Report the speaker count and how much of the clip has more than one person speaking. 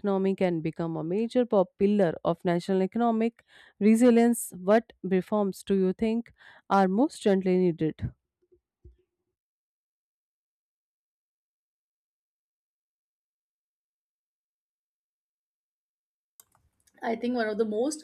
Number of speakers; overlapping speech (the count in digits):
2, no overlap